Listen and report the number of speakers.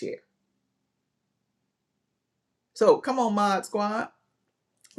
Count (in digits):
1